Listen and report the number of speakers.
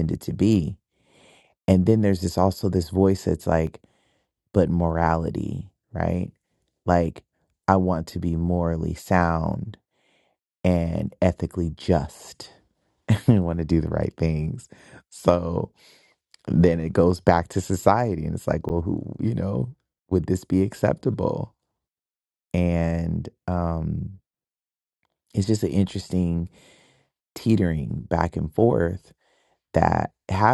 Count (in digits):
1